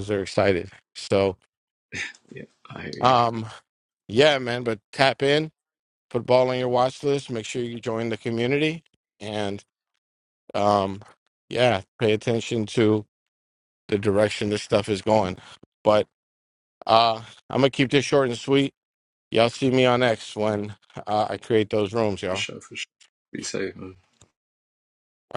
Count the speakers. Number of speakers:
2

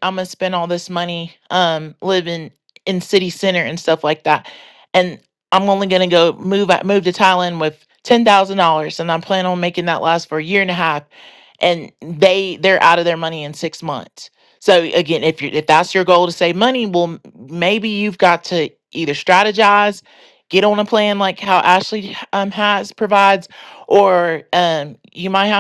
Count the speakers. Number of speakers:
1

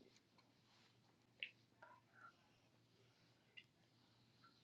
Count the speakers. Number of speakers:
0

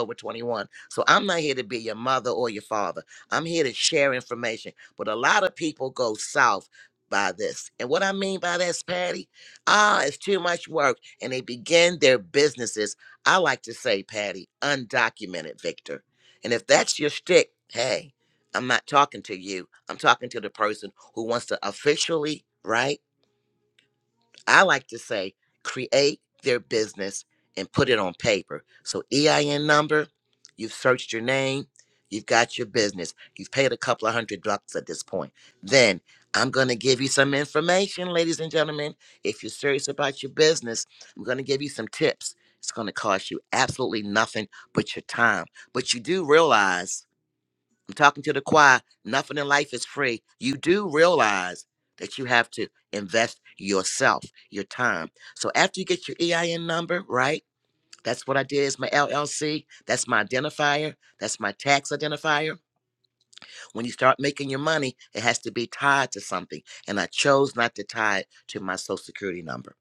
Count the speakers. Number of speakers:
1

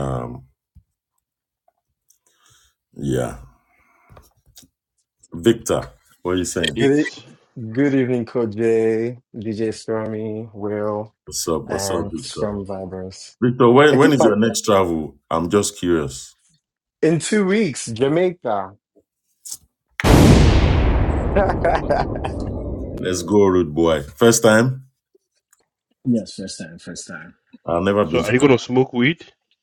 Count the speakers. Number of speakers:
3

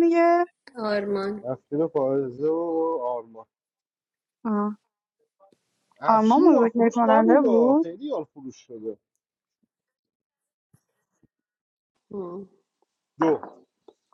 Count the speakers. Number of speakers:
3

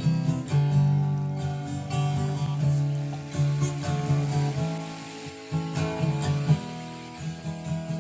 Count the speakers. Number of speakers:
0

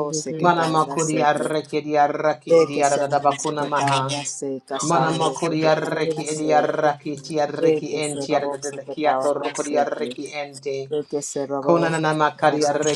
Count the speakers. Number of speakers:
2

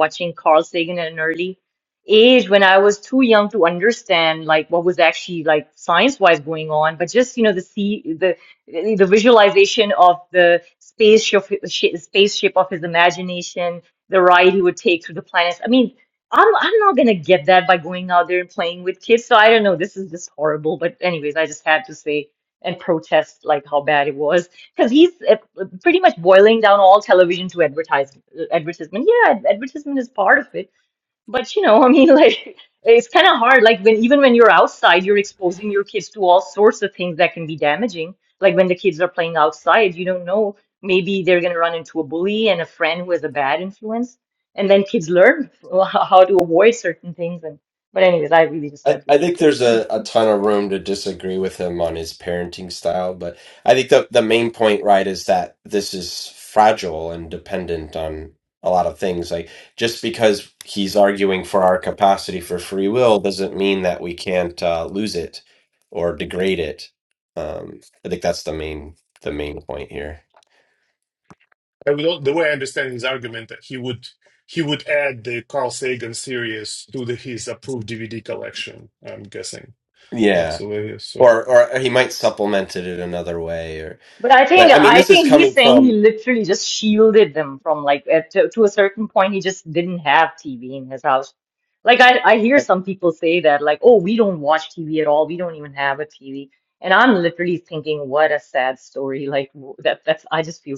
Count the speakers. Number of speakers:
3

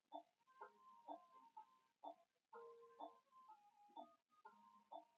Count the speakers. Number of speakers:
0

